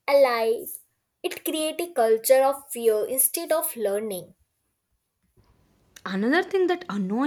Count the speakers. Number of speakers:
2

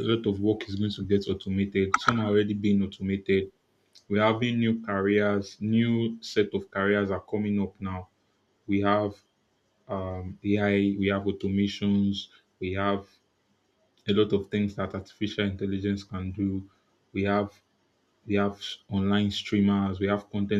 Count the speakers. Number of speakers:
1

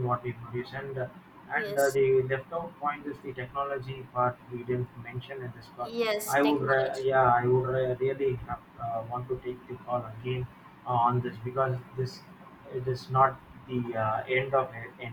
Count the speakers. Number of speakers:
2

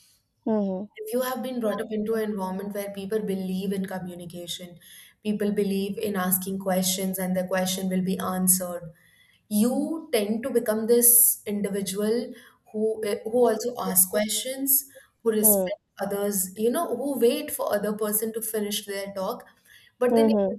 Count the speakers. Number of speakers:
2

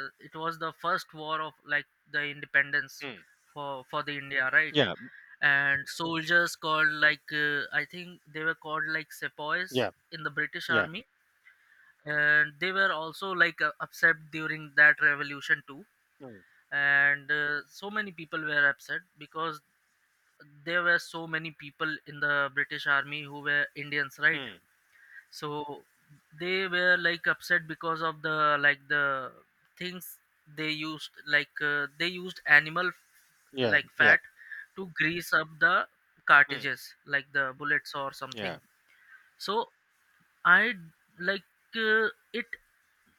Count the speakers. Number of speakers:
2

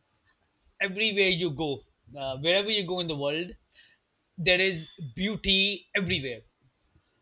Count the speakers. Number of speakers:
1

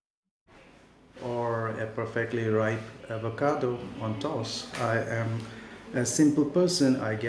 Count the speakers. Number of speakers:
1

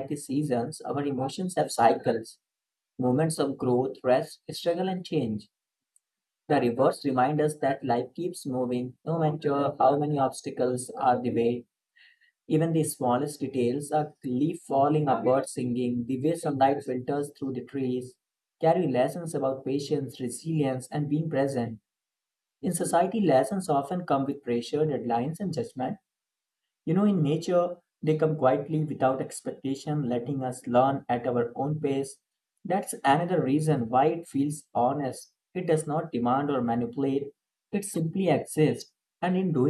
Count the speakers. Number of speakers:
1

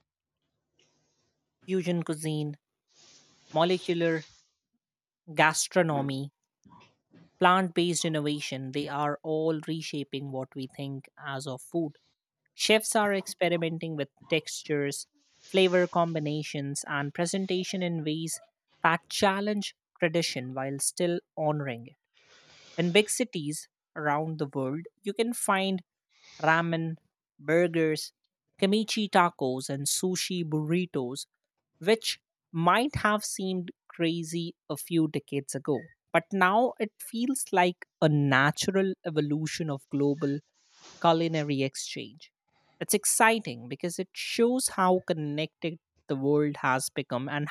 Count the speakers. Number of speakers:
1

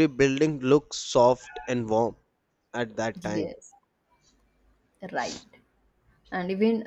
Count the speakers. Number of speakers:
2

